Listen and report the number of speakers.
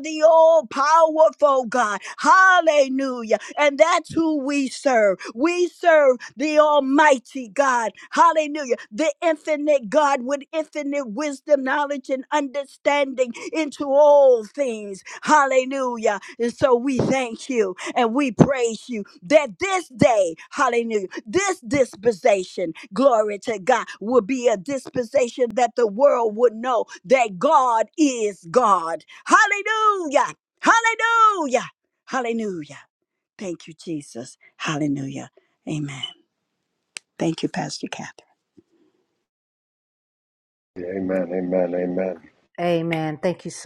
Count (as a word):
three